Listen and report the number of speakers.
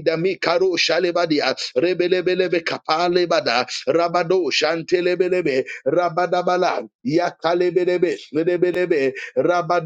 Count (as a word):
one